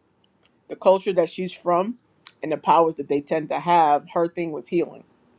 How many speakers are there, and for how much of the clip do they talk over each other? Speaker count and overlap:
1, no overlap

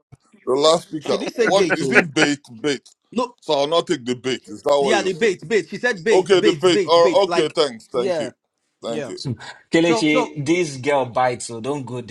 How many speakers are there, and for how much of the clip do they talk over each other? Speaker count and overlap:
3, about 32%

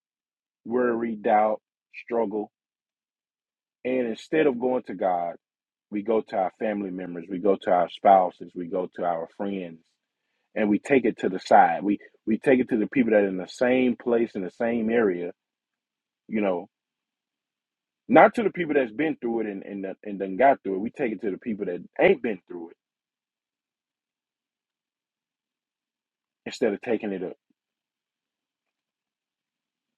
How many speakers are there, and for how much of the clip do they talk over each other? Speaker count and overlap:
1, no overlap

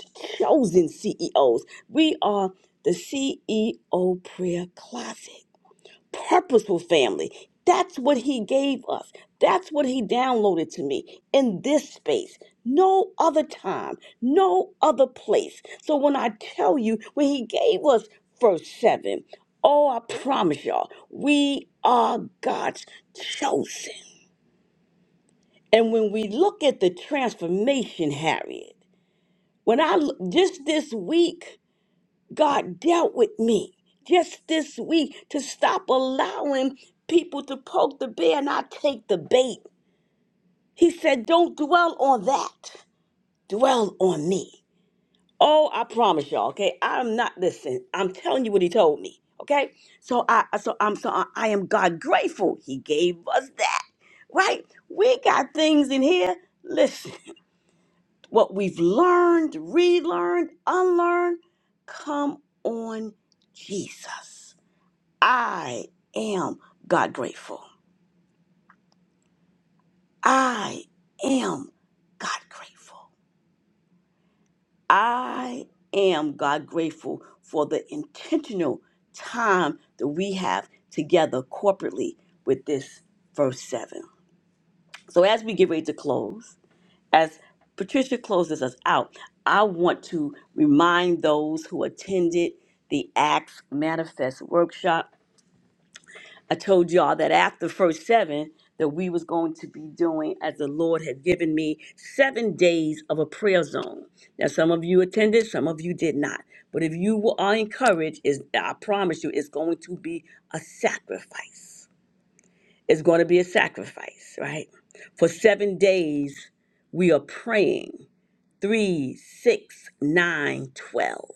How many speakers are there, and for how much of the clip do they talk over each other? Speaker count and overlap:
1, no overlap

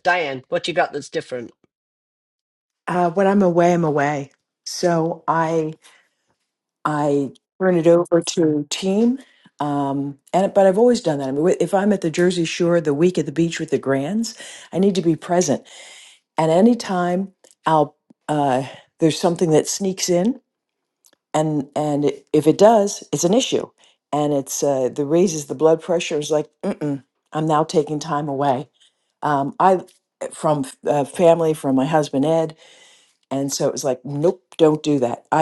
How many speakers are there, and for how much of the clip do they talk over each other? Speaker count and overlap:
2, no overlap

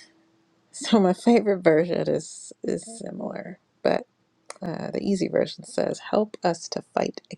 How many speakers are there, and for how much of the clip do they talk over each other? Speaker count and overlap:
1, no overlap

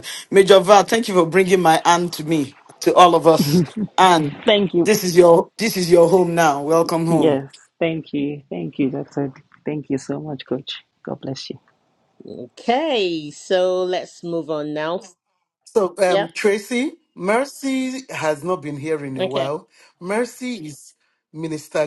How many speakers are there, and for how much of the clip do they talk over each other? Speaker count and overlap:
4, about 4%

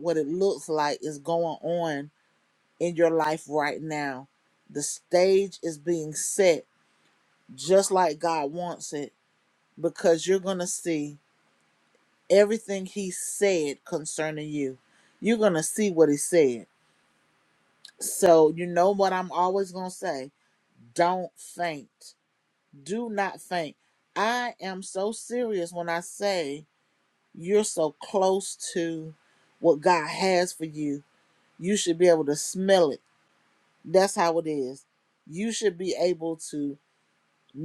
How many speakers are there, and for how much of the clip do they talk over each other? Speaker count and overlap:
1, no overlap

